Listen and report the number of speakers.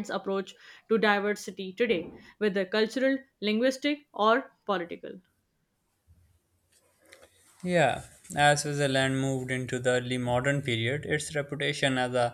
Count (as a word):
two